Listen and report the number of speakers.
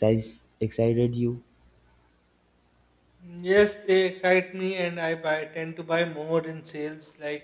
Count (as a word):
two